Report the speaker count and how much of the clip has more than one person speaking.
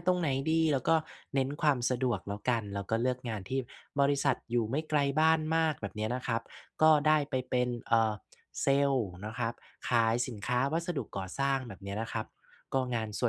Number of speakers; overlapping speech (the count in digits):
1, no overlap